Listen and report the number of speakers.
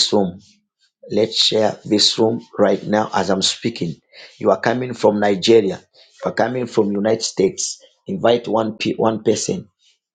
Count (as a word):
one